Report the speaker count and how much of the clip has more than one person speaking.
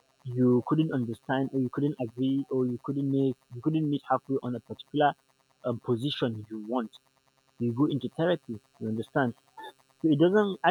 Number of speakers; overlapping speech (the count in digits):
1, no overlap